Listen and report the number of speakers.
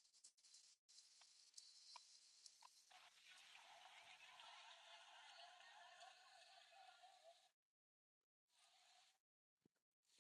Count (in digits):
0